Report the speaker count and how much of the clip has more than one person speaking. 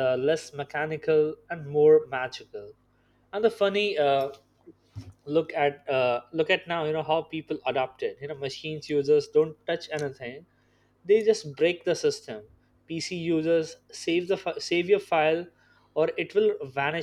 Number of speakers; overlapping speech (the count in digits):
1, no overlap